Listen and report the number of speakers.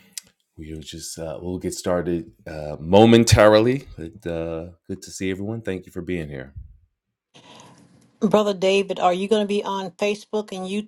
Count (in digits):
2